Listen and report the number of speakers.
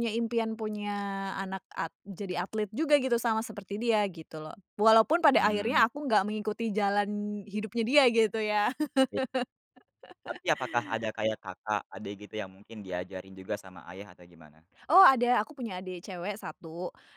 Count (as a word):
two